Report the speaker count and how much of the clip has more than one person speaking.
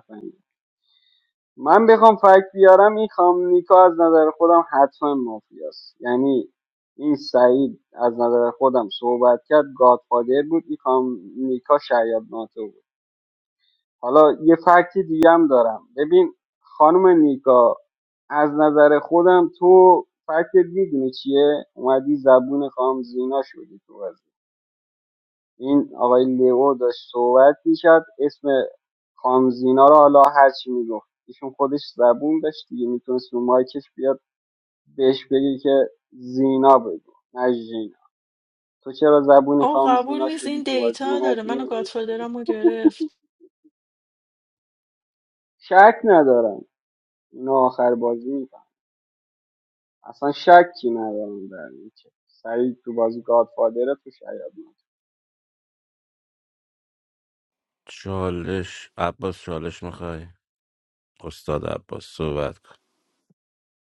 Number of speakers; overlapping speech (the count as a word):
three, about 3%